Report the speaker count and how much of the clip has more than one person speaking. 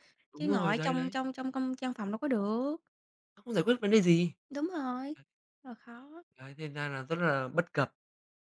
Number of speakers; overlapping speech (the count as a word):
two, about 8%